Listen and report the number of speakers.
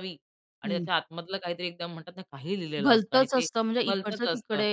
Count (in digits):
2